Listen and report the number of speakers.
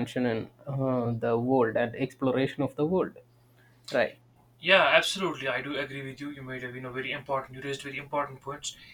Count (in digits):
2